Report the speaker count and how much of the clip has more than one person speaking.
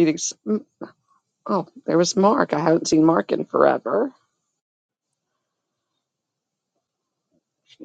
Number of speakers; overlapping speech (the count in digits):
1, no overlap